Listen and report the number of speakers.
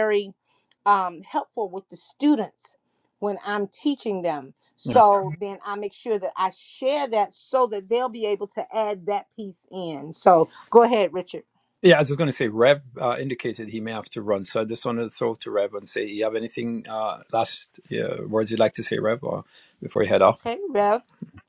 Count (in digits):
2